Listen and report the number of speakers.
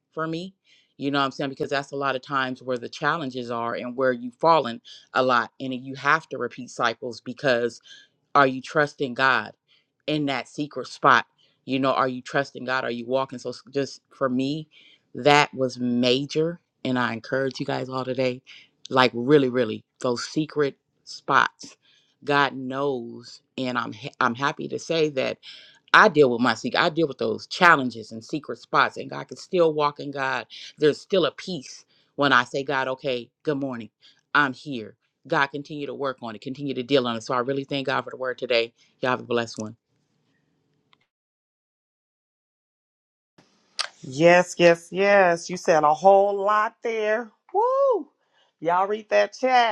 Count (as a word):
two